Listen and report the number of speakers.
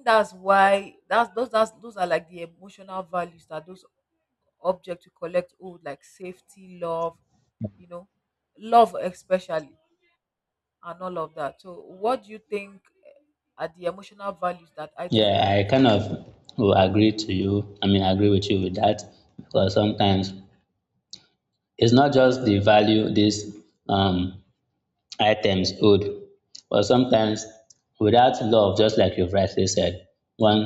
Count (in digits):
2